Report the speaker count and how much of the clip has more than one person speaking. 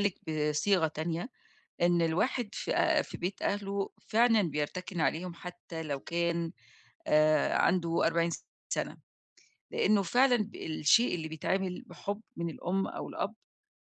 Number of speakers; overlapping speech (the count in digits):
1, no overlap